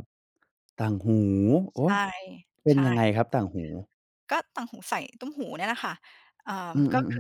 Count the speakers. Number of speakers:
2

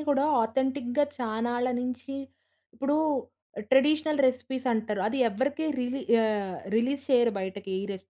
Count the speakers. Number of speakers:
1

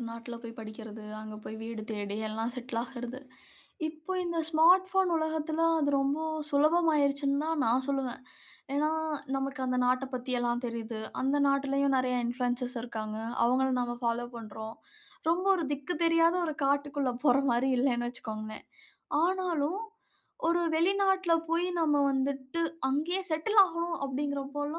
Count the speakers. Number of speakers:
1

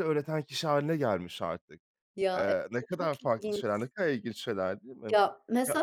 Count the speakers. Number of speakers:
2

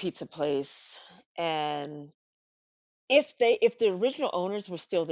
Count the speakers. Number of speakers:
1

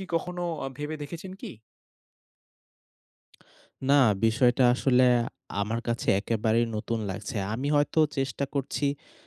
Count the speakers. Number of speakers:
2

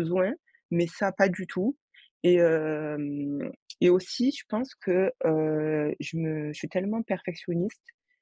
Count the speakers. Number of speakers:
1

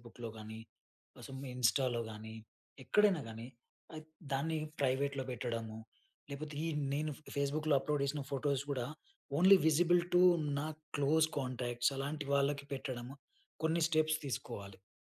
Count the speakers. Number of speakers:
1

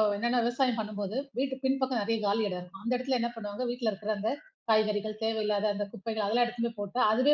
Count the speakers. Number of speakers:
1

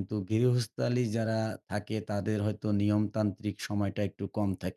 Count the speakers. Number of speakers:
1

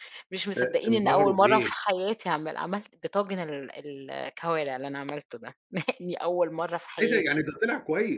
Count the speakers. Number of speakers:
2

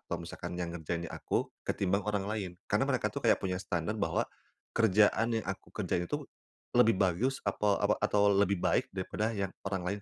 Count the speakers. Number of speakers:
1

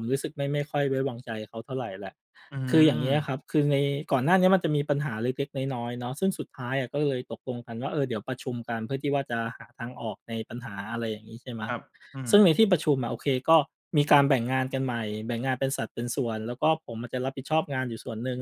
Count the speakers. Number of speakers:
2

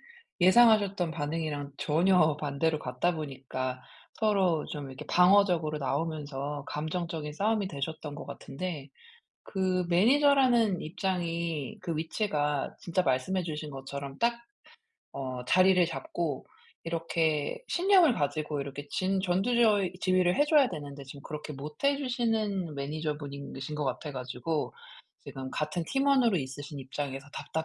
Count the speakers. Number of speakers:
1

